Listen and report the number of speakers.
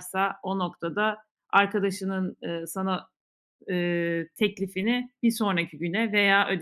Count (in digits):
1